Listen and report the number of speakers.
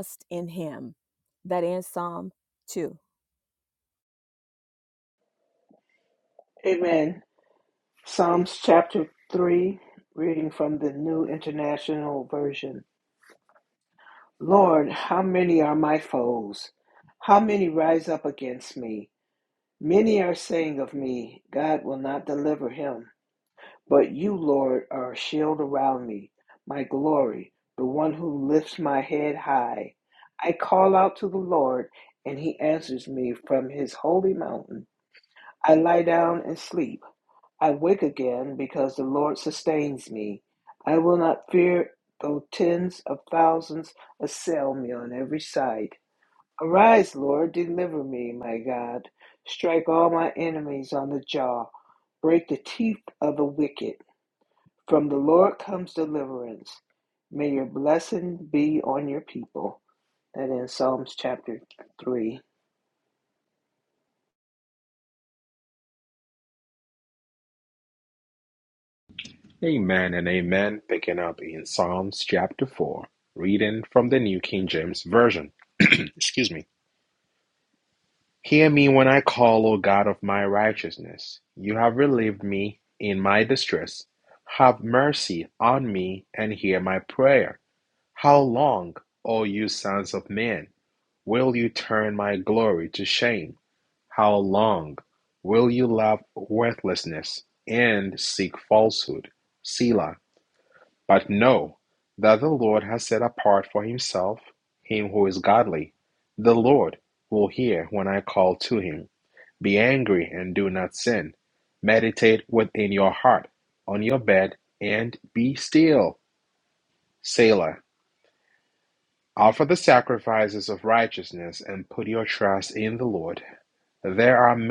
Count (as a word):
three